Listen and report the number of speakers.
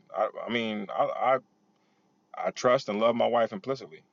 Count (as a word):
one